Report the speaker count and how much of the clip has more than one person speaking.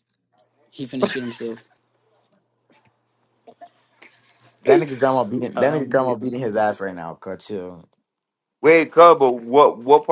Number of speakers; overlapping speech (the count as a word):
three, about 6%